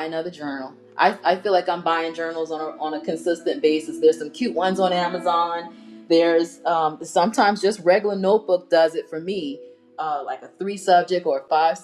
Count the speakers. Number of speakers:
one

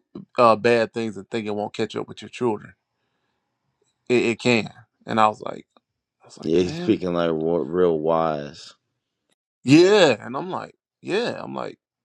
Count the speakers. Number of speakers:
two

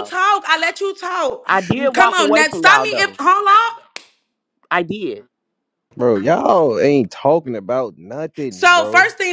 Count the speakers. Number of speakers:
three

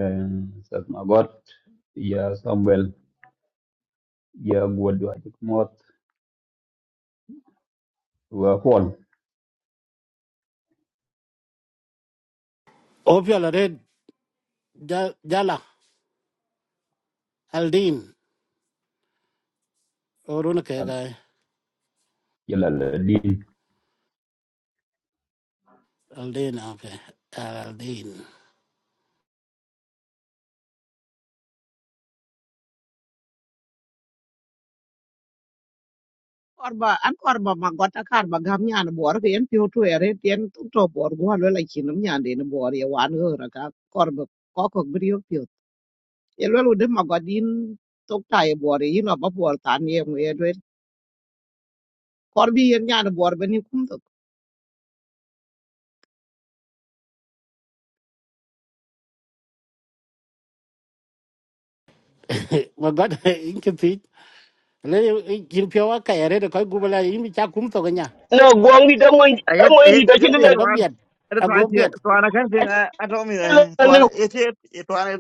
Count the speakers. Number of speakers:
five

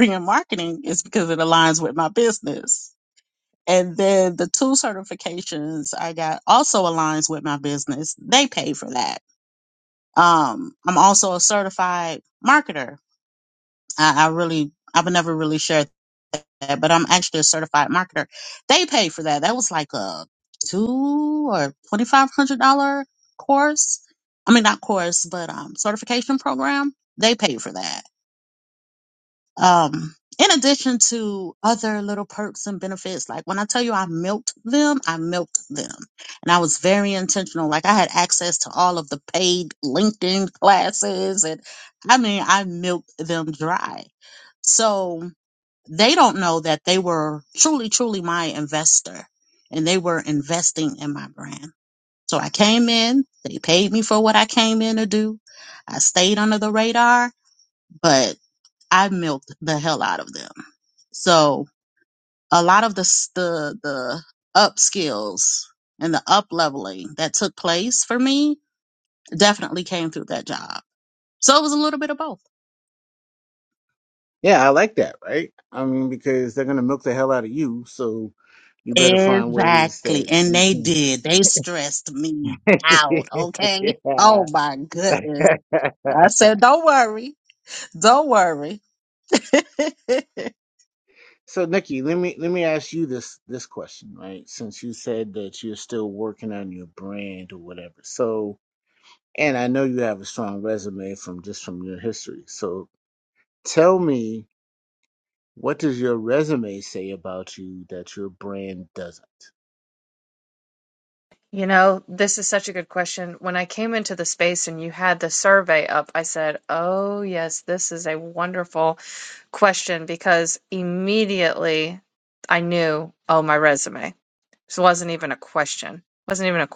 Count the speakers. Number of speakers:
three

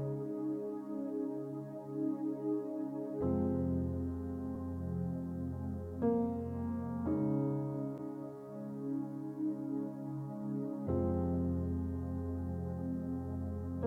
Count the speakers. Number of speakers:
zero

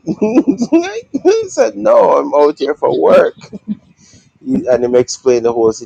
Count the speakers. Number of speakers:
one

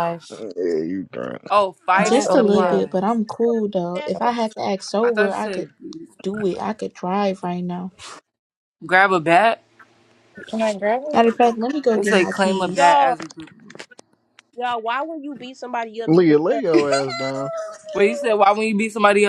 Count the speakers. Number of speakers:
five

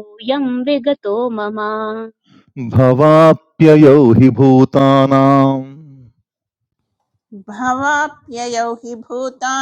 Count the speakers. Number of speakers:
three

